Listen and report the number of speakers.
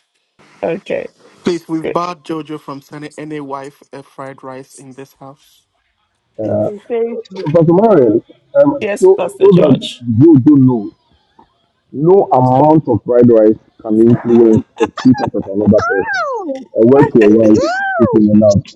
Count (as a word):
four